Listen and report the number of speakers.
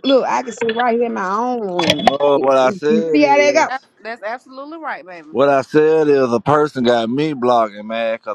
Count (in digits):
3